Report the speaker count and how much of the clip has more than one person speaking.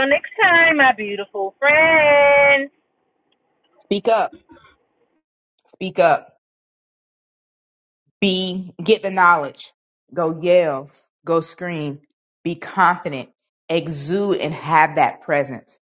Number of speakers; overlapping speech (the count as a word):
two, no overlap